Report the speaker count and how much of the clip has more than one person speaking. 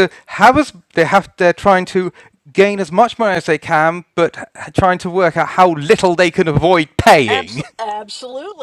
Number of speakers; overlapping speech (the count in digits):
2, about 4%